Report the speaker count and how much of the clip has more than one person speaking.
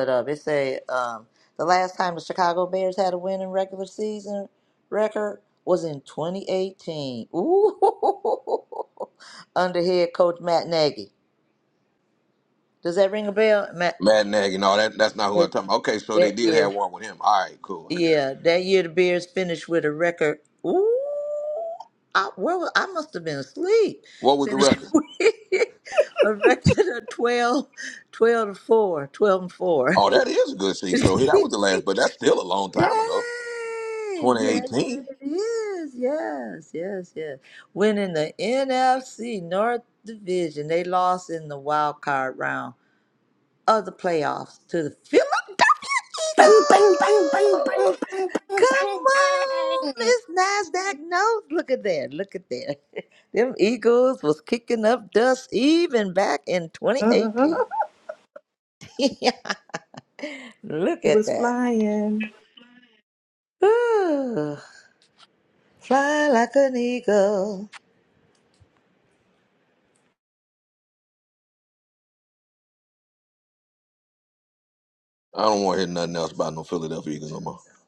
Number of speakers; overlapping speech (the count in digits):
3, about 7%